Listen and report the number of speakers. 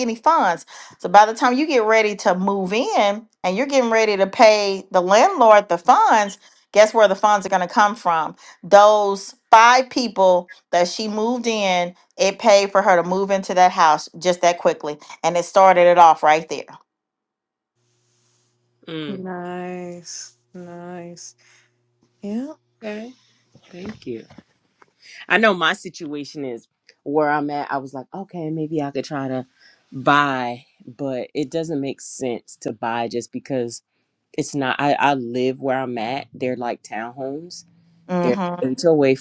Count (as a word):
three